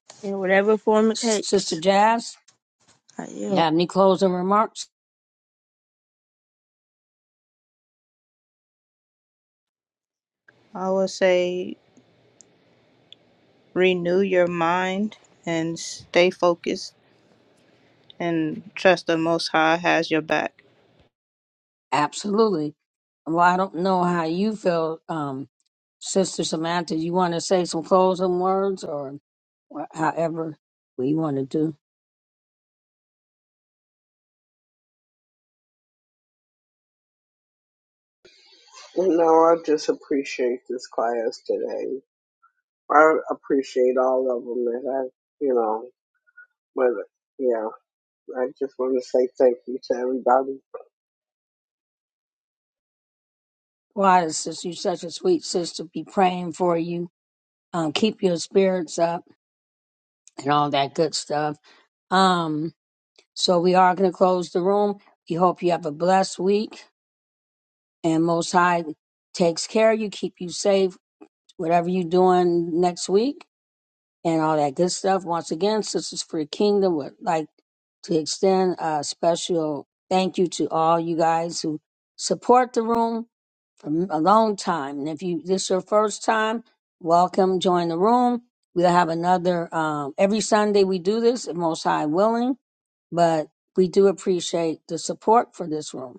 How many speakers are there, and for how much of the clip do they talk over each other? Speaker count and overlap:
four, about 1%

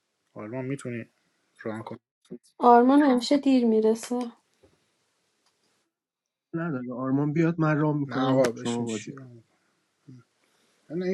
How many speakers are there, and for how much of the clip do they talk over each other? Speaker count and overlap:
three, about 11%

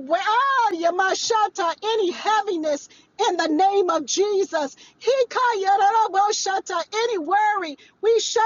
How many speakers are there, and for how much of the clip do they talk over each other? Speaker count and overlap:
one, no overlap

